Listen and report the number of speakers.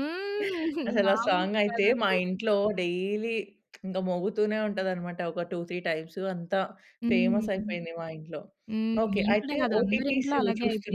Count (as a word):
two